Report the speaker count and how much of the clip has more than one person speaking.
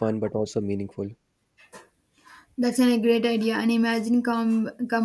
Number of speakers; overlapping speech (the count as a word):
two, no overlap